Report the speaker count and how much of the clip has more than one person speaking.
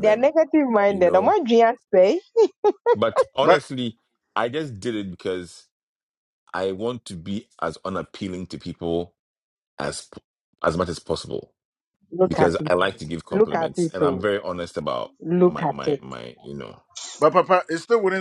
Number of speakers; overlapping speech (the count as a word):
three, about 16%